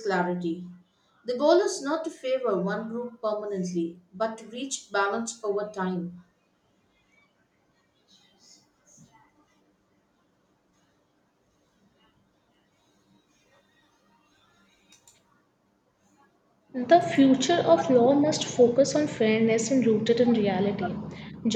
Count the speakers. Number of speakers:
2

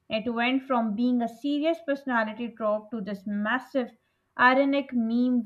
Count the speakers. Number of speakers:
1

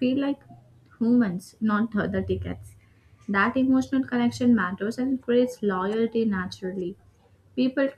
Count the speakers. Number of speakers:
1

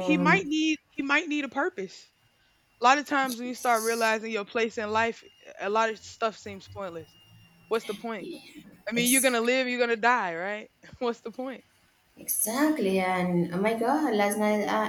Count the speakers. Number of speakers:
2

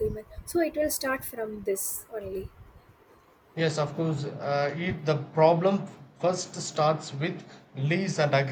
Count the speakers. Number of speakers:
2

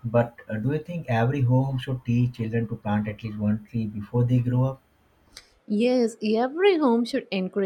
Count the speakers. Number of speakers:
2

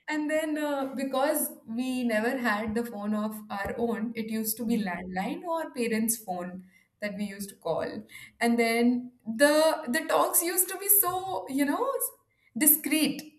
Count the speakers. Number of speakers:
1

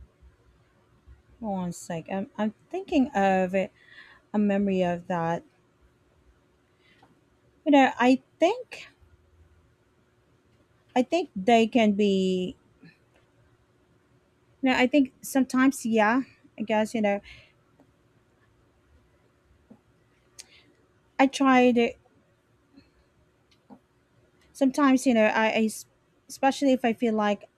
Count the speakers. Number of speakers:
1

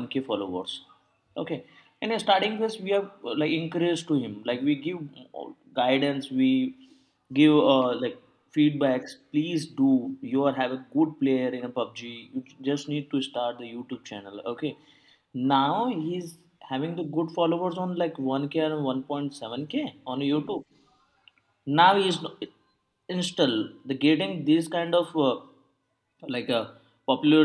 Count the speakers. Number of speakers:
1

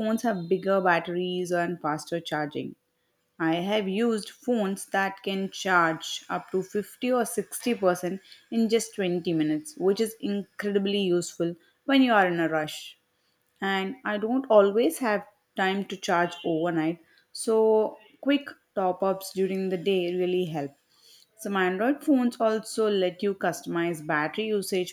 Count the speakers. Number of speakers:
1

